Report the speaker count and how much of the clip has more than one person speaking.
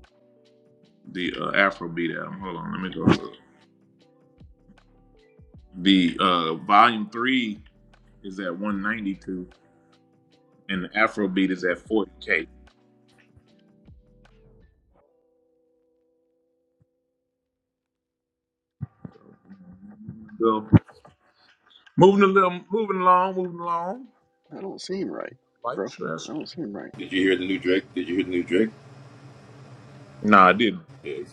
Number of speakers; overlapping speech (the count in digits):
3, about 1%